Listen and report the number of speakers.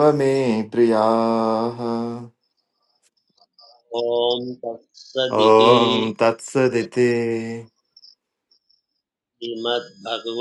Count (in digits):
2